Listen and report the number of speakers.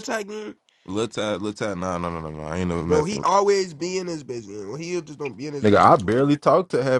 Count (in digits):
2